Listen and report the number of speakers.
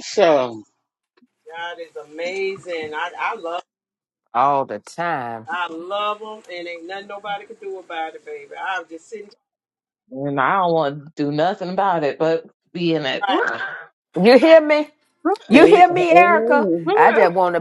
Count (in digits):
4